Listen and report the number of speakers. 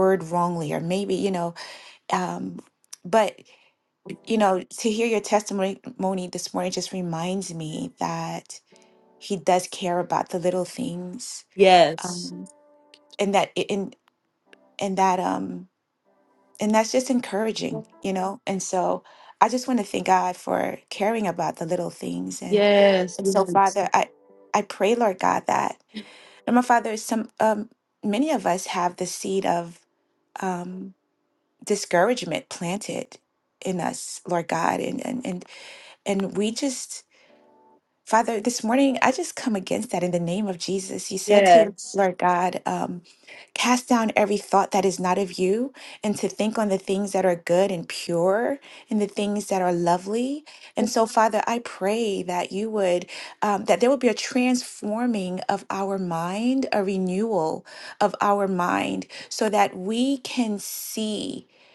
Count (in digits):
2